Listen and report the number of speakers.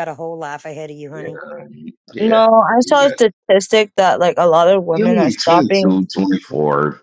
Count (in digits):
3